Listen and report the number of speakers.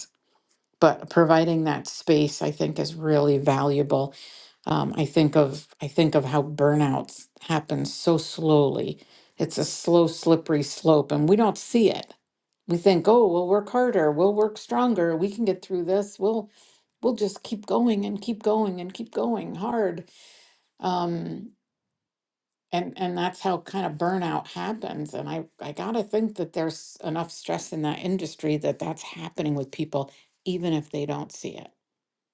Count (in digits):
1